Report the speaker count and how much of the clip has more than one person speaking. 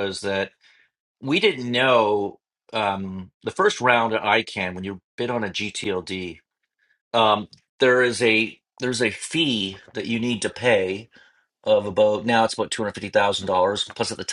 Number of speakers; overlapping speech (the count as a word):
one, no overlap